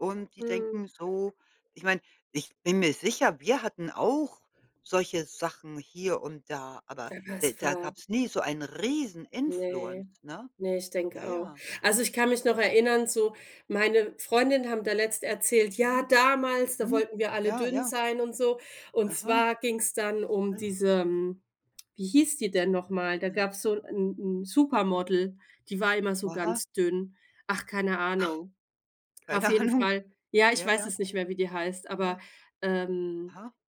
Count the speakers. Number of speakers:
2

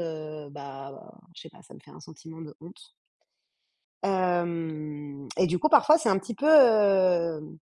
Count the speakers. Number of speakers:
1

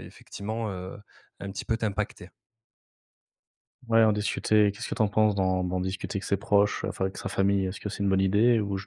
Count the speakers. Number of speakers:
2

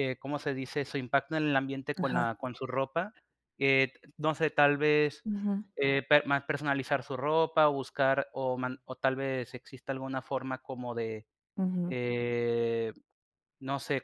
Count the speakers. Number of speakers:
2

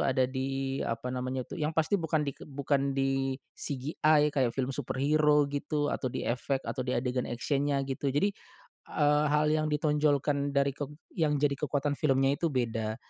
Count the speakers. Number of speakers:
1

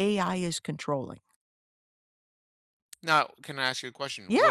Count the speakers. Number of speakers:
2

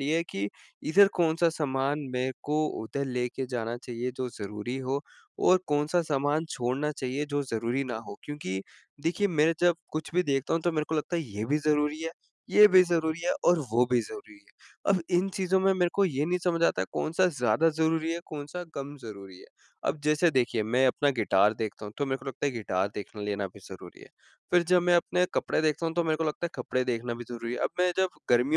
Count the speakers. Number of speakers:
1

